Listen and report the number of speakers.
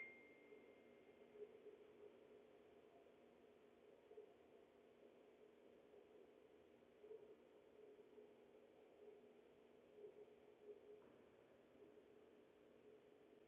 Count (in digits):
0